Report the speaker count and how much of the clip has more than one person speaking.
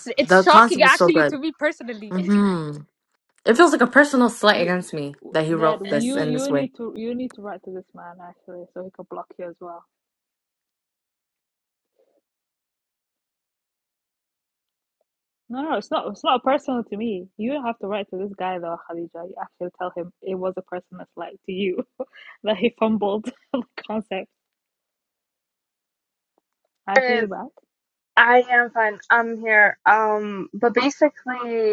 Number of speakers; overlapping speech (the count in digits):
4, about 10%